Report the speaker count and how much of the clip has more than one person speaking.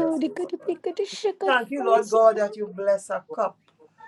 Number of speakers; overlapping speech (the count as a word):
two, about 30%